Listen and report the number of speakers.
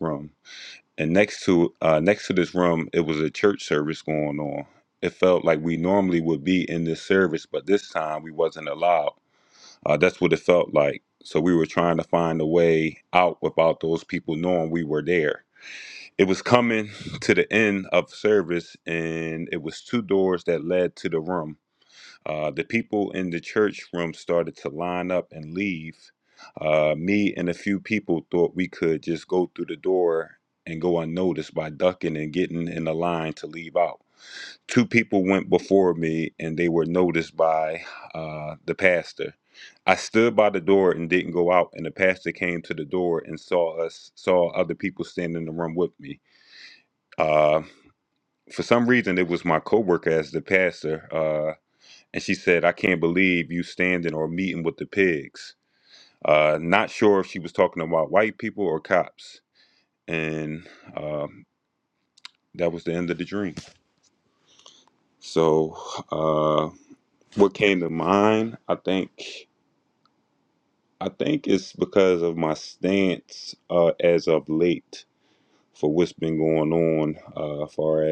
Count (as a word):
one